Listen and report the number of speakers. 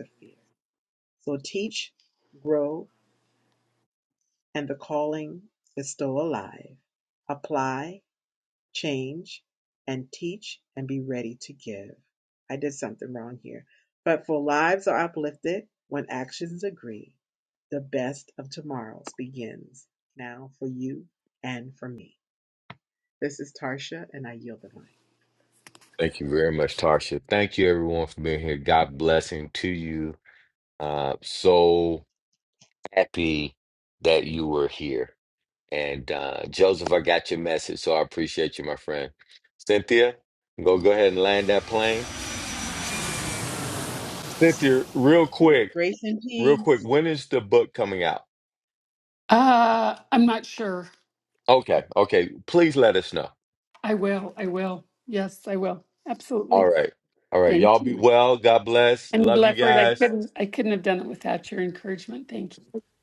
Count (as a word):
three